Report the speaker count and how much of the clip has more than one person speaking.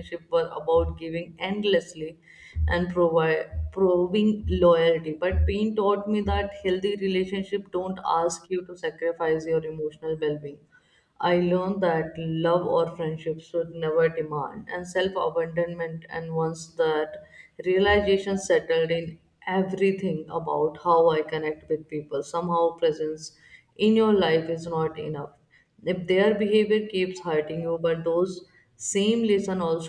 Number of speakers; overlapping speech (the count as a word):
one, no overlap